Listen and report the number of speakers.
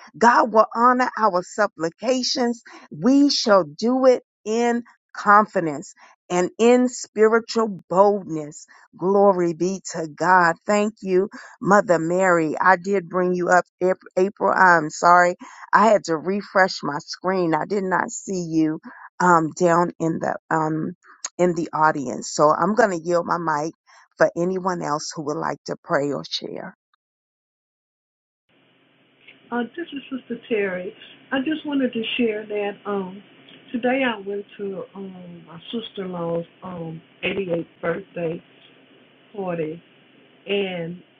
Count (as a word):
two